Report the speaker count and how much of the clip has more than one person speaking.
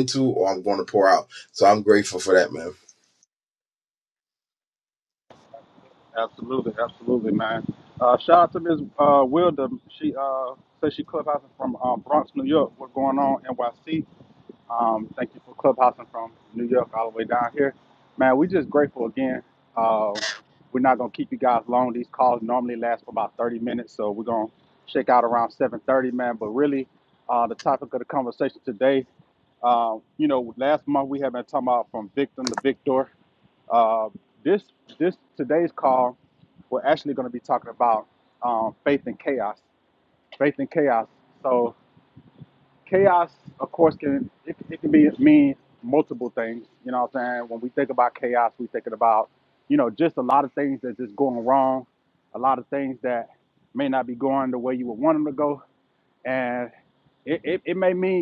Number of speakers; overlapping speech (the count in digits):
2, no overlap